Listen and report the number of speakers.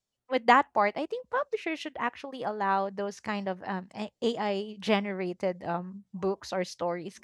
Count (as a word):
one